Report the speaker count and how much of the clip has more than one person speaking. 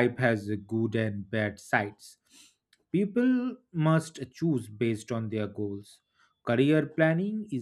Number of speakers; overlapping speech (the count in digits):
1, no overlap